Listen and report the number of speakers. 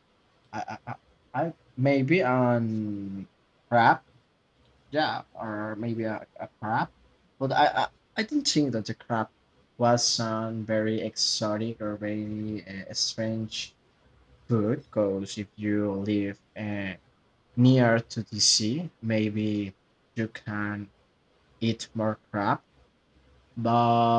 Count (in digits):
1